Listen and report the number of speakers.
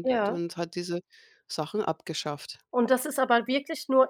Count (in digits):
2